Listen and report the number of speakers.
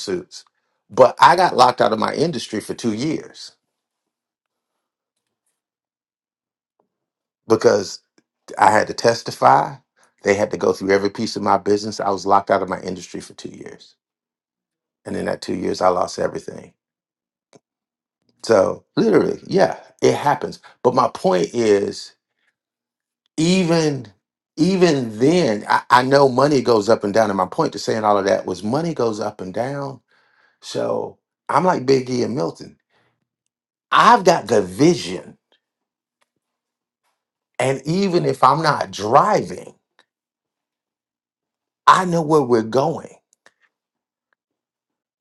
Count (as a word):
one